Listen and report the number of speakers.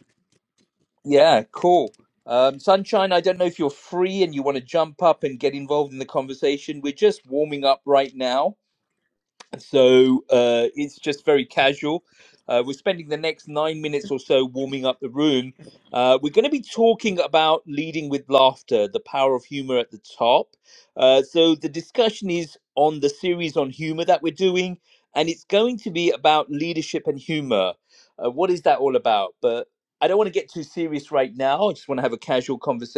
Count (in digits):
1